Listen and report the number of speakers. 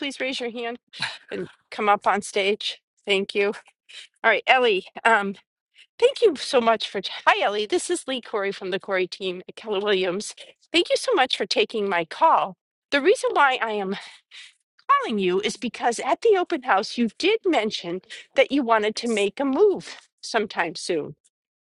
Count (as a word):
one